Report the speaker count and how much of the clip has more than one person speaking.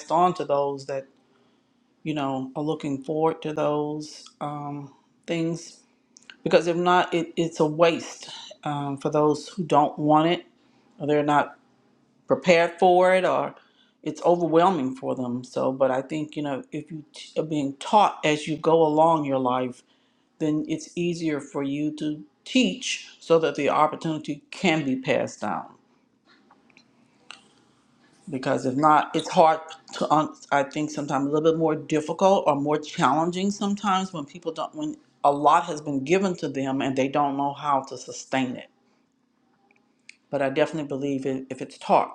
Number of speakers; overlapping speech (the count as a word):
one, no overlap